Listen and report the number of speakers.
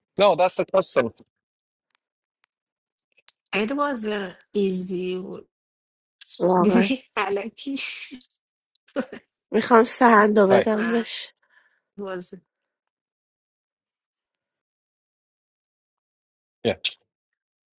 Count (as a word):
three